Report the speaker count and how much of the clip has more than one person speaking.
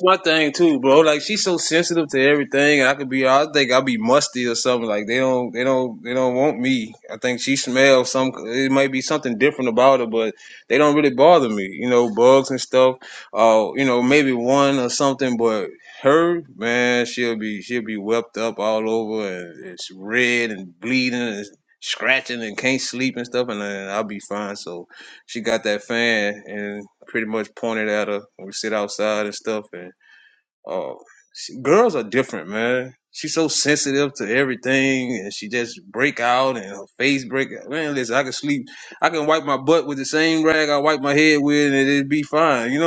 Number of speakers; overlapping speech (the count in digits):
1, no overlap